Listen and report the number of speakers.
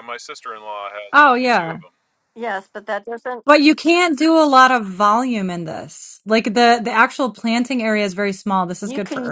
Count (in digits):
3